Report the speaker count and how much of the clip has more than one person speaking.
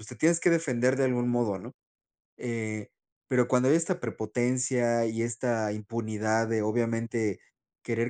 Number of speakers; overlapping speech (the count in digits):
1, no overlap